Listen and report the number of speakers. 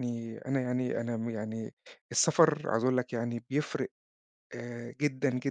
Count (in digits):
1